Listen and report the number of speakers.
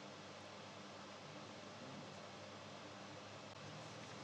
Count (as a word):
zero